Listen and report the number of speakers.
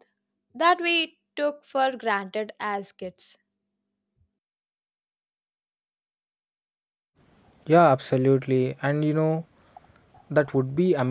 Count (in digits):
2